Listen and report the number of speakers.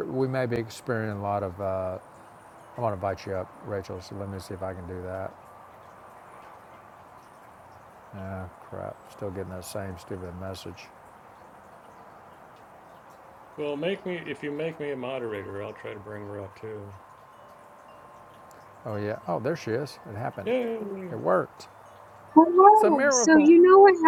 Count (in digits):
3